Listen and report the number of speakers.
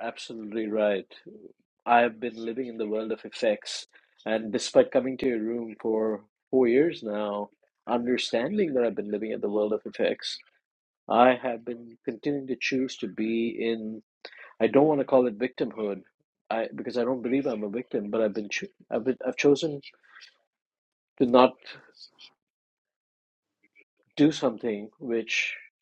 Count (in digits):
1